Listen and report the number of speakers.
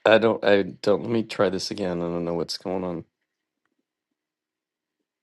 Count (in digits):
1